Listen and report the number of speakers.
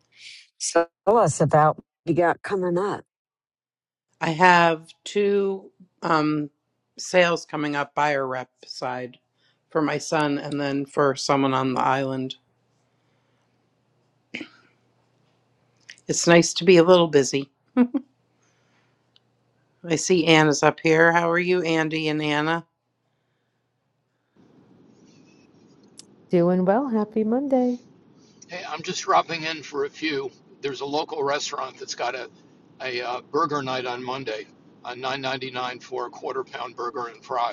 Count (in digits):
4